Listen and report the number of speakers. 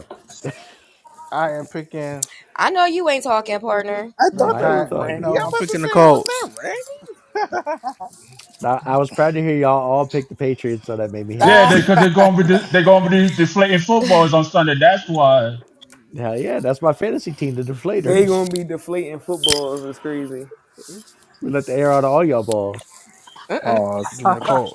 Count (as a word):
six